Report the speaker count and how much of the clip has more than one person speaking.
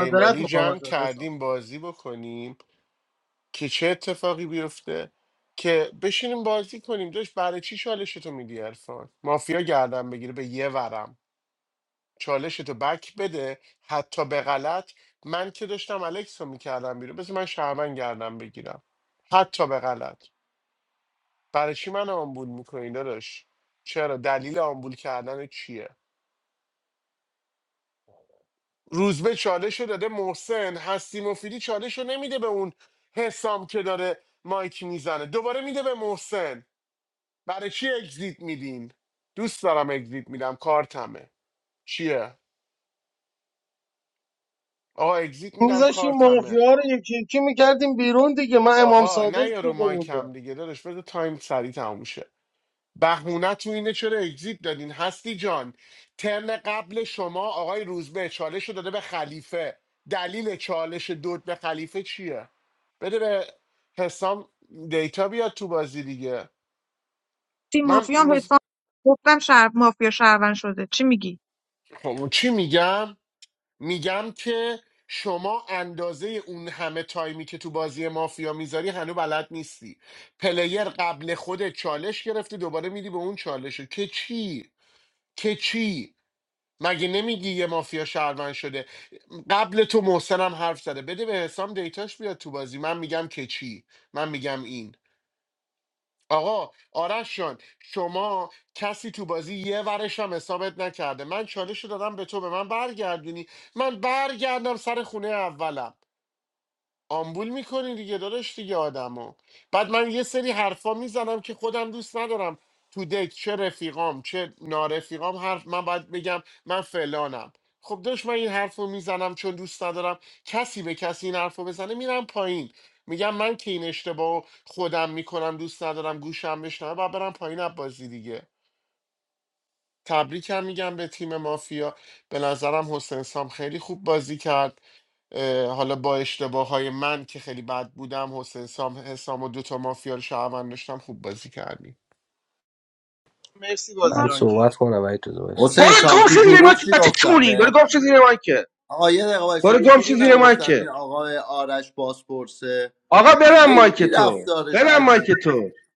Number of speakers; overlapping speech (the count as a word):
six, about 6%